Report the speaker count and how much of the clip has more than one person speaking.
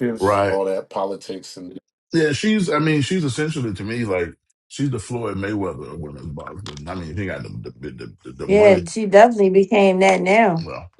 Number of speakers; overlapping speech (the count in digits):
3, about 7%